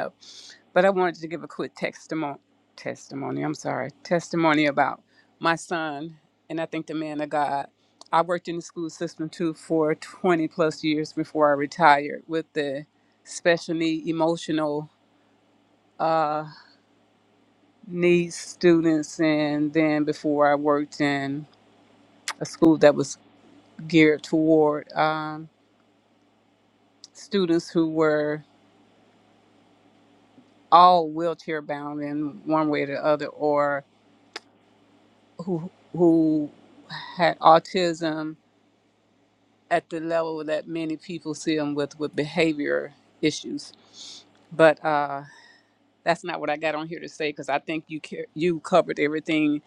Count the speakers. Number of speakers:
1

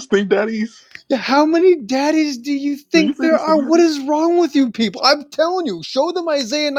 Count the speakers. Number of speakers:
2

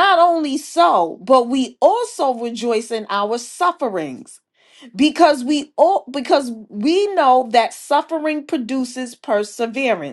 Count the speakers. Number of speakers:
1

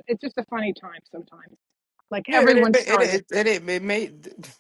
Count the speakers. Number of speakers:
2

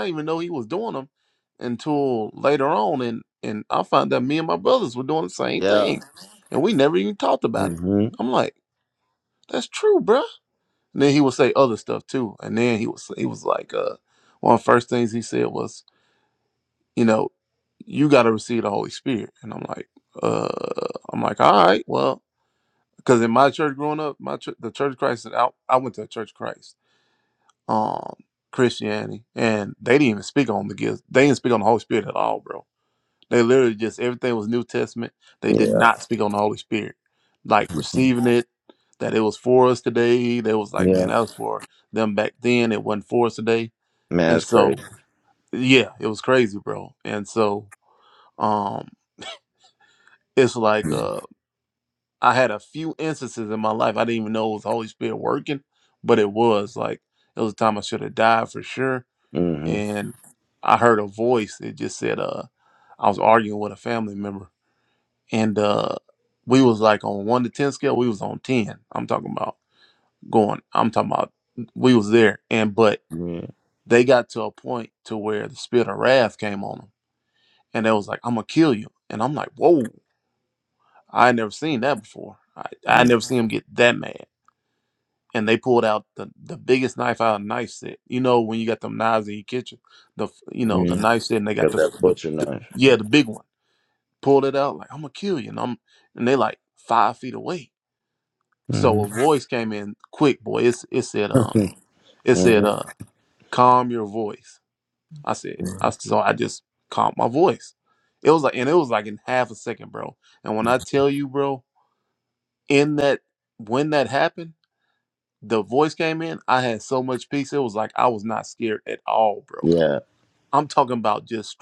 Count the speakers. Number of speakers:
2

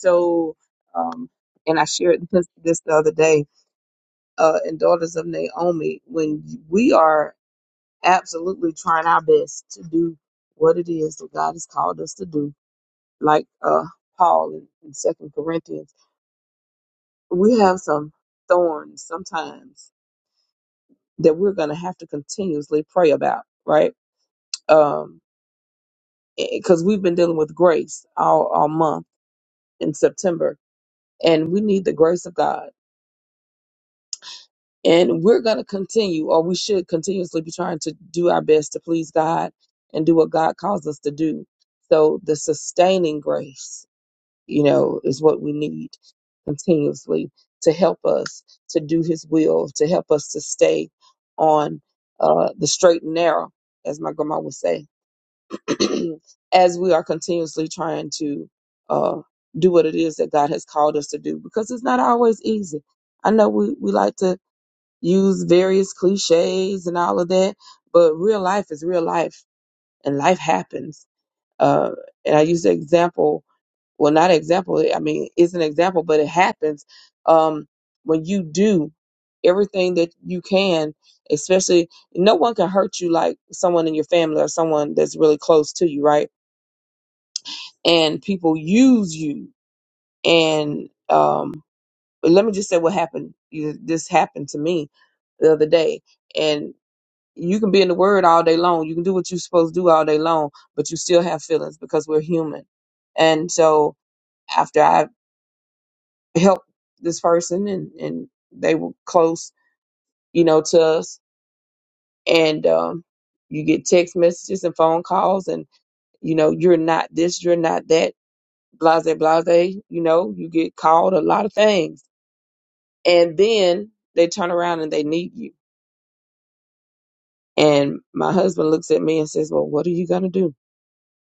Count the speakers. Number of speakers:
1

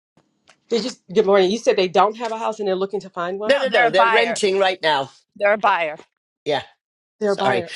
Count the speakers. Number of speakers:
3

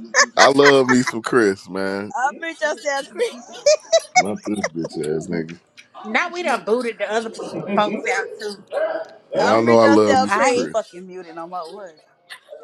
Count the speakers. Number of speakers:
4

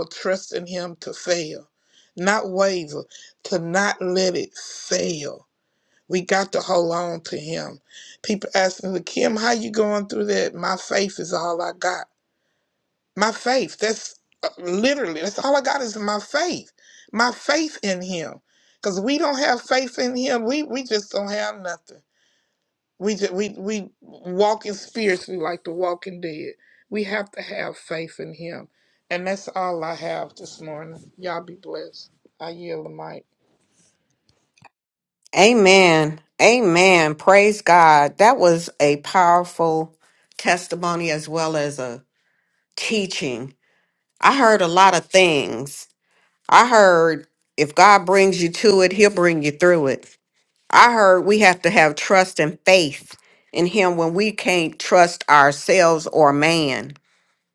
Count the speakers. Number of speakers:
2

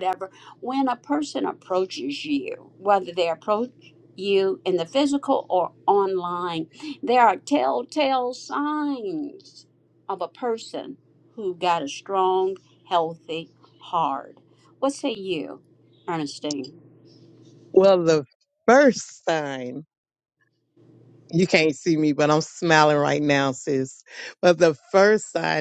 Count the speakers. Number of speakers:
2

